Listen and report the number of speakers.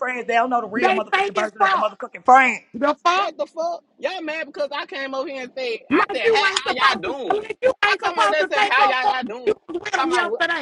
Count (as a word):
three